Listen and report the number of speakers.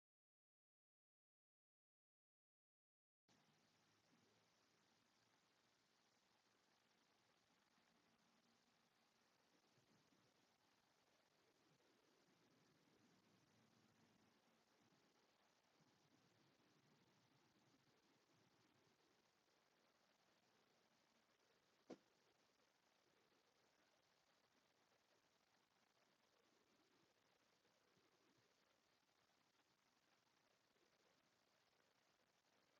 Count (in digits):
0